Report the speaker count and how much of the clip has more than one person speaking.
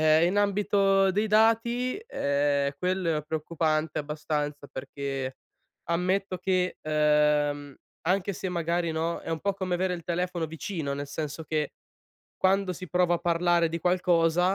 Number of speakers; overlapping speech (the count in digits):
1, no overlap